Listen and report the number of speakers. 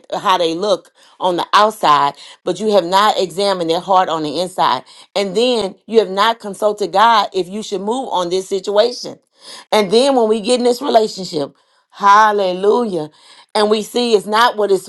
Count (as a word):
one